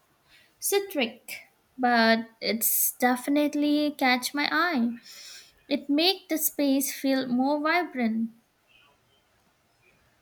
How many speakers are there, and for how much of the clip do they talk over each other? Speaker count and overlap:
1, no overlap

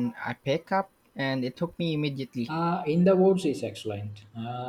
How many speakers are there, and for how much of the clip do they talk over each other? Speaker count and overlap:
2, under 1%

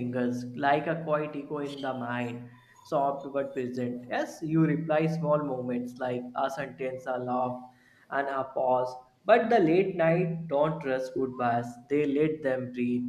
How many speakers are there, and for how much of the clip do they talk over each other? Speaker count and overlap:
1, no overlap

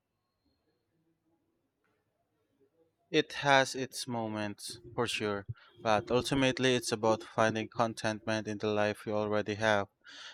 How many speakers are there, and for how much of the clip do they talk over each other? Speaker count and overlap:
1, no overlap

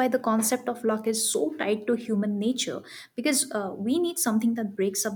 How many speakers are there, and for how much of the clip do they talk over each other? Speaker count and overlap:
1, no overlap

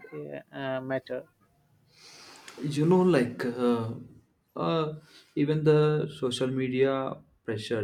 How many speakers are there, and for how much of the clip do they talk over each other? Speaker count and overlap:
2, no overlap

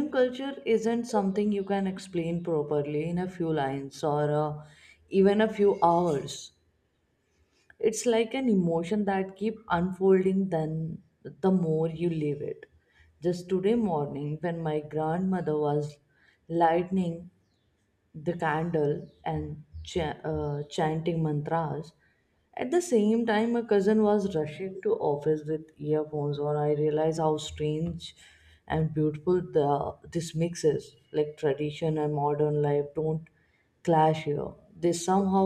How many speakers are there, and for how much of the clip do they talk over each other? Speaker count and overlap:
1, no overlap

